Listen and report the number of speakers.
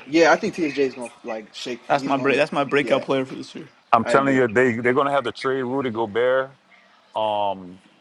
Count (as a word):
three